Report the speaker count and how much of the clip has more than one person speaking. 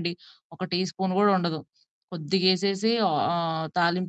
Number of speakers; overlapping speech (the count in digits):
1, no overlap